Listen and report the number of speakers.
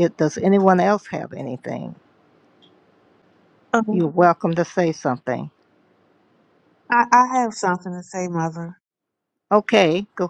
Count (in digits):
2